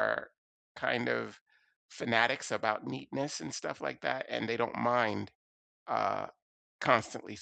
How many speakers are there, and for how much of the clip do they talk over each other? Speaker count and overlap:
one, no overlap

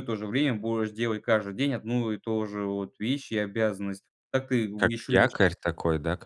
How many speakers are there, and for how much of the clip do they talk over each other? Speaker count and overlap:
two, about 5%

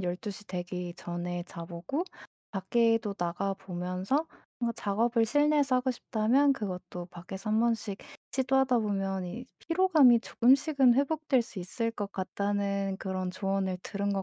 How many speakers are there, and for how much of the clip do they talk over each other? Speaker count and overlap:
one, no overlap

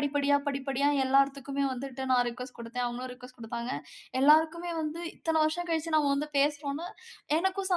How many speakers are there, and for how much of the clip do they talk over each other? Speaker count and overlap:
one, no overlap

